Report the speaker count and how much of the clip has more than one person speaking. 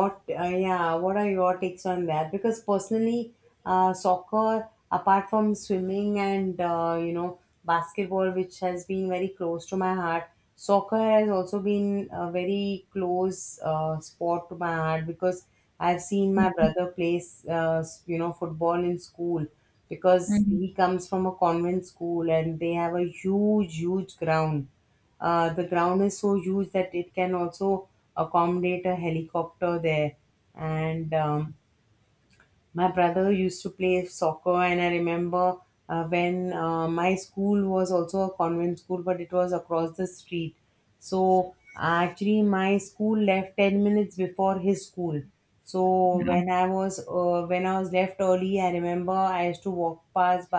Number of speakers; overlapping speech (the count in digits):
1, no overlap